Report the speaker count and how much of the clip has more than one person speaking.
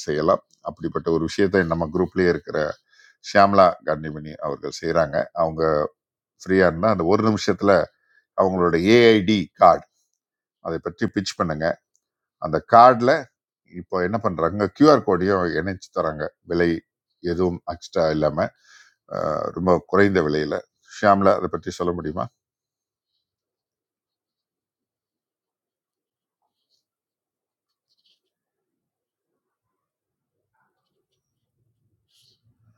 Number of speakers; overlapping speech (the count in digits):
1, no overlap